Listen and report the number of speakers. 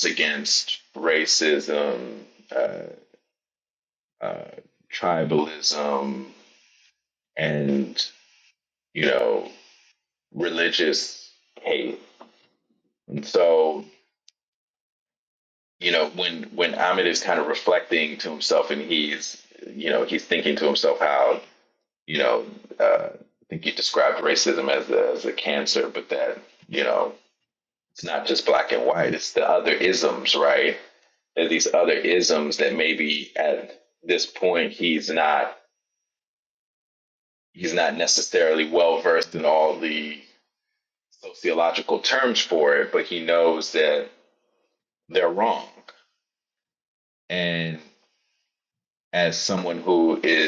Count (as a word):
one